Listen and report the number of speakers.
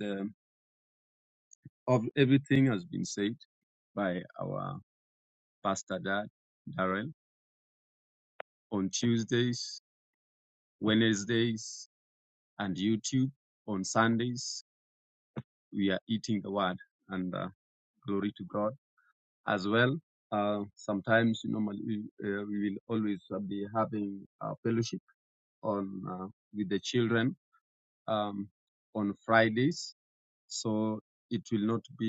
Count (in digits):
1